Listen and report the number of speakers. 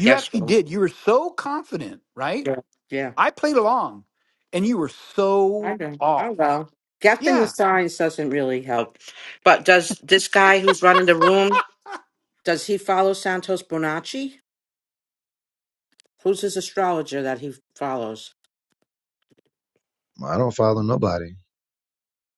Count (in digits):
3